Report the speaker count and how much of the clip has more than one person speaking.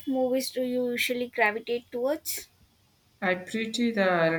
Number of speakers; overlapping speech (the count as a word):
two, no overlap